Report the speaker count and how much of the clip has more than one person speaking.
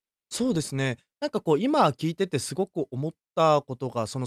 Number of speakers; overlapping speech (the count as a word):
one, no overlap